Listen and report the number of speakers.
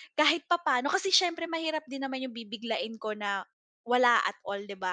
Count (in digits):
1